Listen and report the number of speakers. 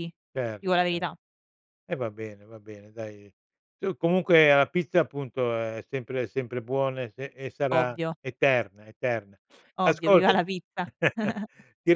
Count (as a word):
two